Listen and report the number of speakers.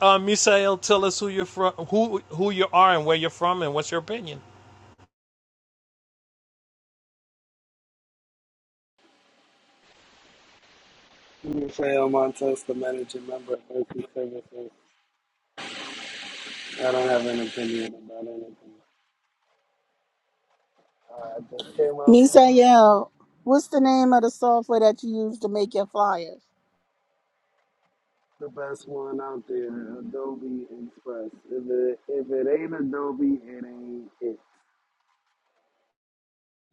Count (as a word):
three